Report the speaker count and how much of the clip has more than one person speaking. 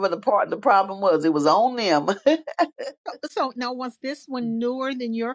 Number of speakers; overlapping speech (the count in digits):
2, no overlap